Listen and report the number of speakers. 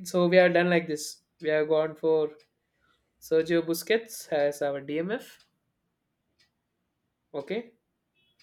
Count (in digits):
1